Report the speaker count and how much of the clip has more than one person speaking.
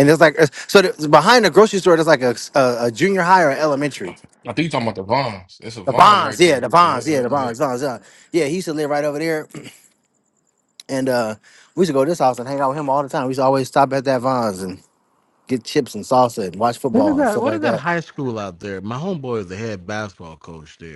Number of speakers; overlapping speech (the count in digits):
3, about 12%